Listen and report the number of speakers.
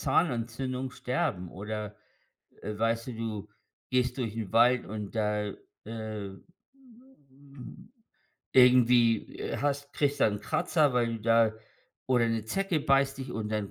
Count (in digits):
1